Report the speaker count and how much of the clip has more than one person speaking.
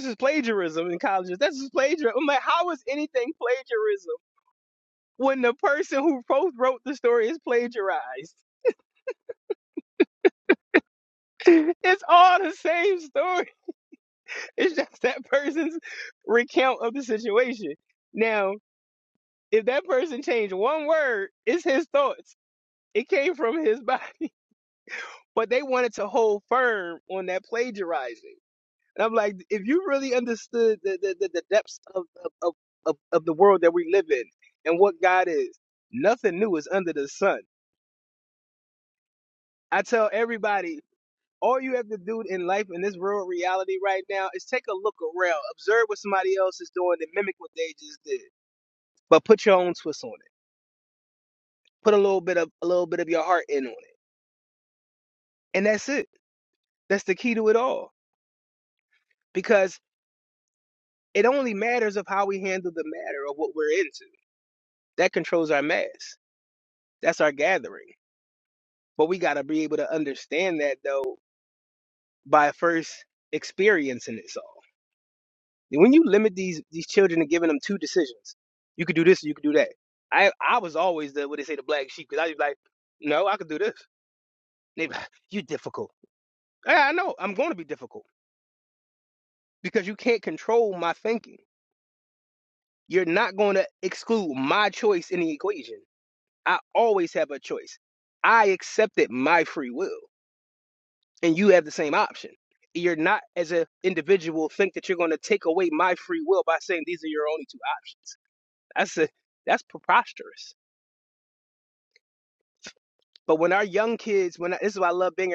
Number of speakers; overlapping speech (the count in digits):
1, no overlap